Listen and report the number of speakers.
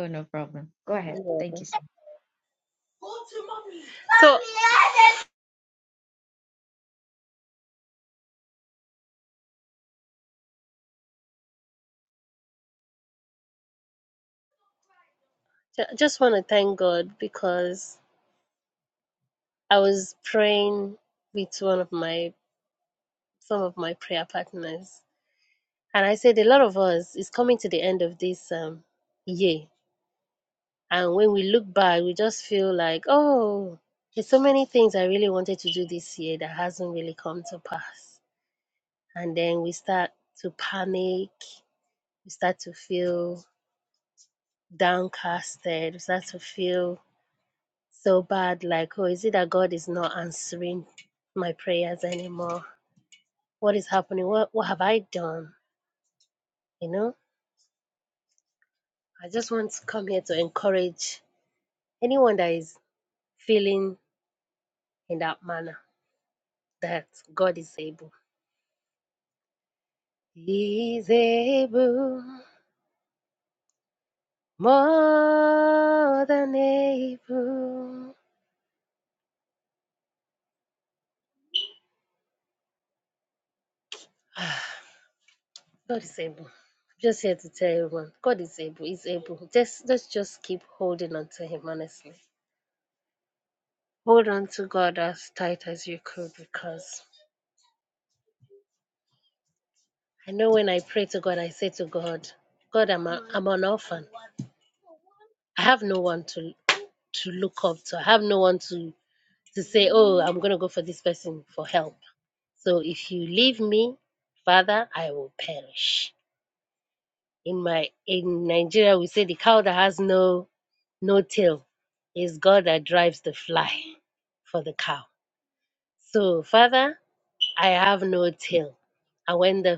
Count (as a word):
two